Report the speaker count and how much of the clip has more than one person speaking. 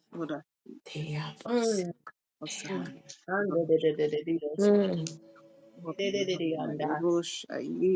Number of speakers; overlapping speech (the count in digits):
3, about 27%